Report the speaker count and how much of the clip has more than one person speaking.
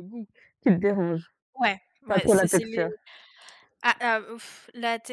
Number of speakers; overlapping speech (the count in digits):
2, about 15%